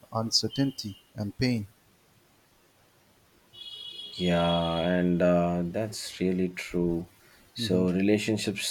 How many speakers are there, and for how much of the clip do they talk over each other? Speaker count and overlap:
2, about 3%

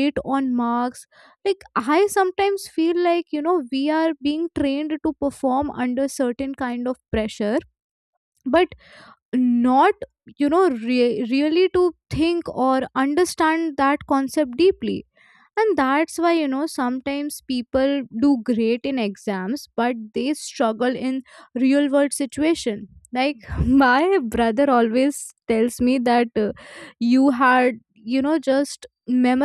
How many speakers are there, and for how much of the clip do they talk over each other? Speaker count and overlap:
1, no overlap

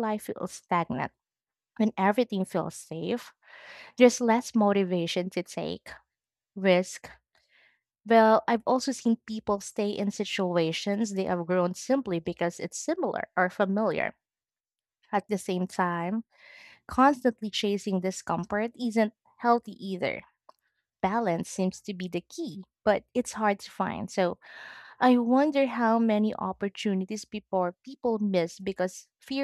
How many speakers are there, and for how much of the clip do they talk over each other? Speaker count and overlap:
1, no overlap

